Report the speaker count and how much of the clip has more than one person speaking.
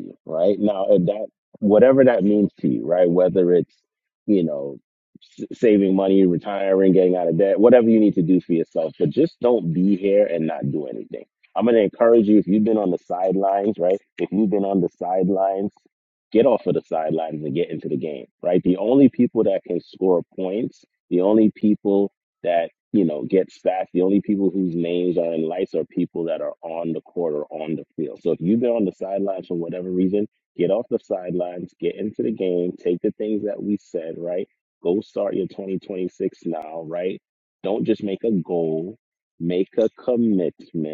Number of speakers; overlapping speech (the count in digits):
1, no overlap